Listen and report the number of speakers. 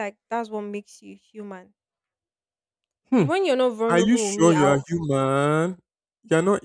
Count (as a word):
two